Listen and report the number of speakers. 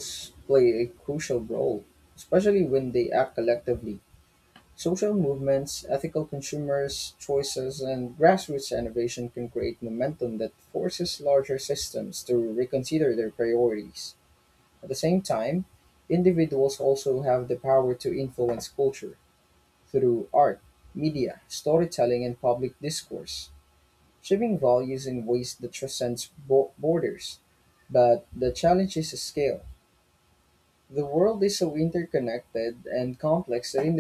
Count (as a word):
one